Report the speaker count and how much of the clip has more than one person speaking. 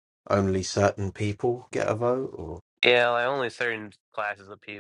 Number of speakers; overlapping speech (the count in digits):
2, no overlap